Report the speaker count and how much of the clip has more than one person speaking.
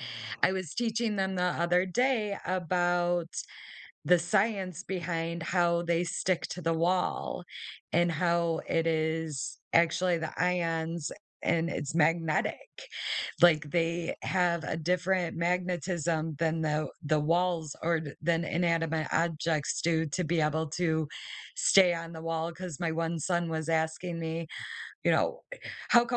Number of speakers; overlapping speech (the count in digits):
1, no overlap